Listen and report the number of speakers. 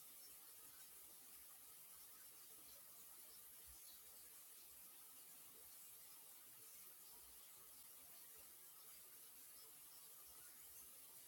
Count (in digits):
0